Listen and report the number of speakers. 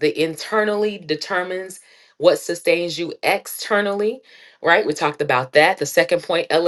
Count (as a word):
one